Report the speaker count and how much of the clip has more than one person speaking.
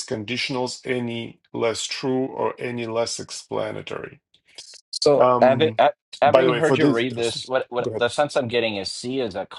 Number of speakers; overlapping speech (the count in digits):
2, about 16%